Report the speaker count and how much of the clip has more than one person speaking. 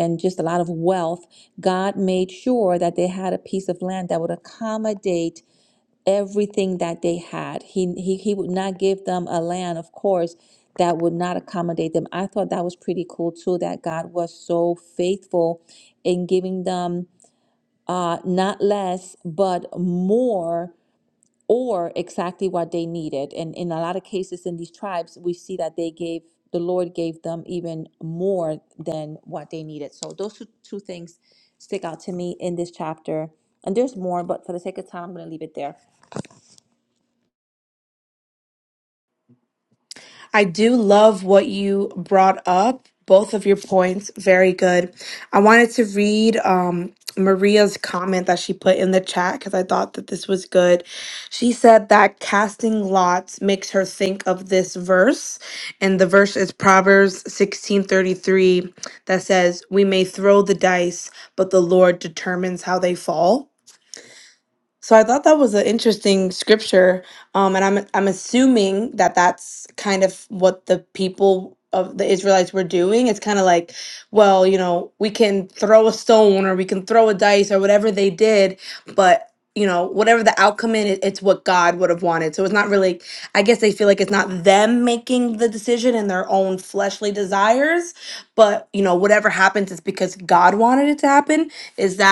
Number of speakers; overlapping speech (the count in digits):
2, no overlap